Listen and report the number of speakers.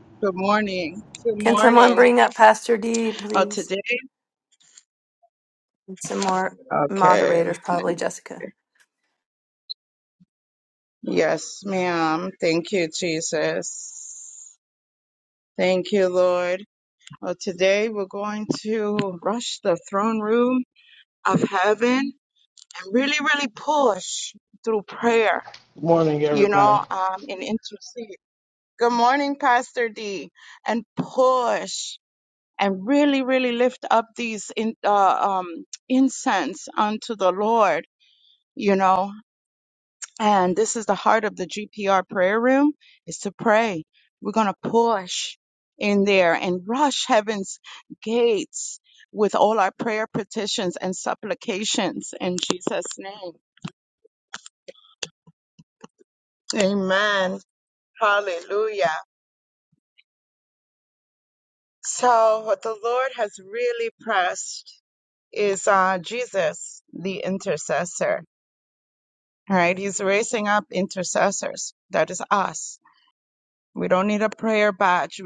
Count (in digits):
3